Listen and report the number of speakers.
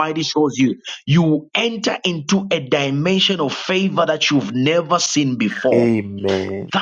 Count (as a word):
two